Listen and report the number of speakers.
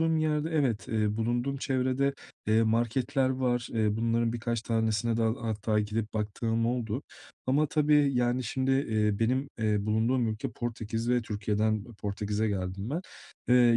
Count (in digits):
1